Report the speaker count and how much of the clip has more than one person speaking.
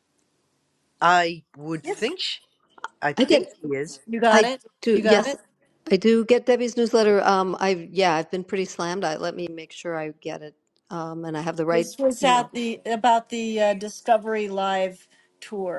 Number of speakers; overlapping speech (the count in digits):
3, about 13%